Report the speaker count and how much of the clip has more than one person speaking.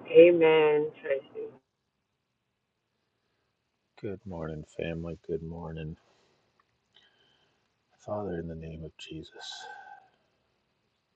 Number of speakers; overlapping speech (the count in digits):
2, no overlap